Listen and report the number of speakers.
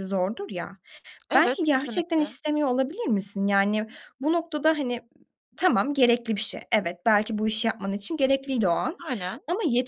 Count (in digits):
2